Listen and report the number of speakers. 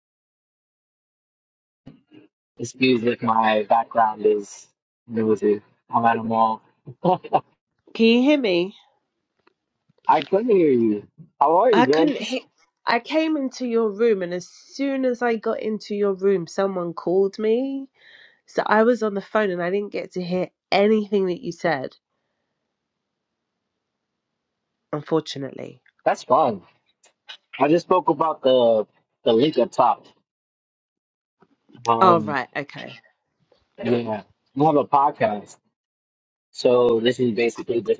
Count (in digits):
2